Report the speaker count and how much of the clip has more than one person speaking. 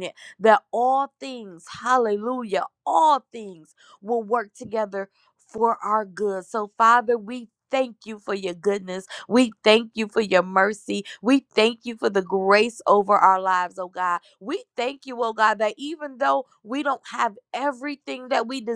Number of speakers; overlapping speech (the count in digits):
1, no overlap